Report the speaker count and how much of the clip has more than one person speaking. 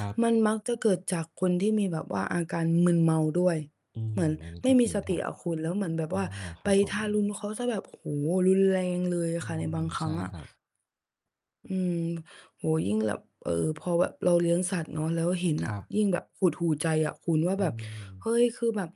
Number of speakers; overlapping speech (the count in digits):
2, about 13%